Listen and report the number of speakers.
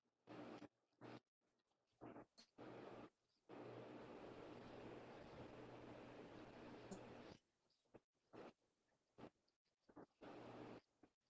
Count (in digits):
0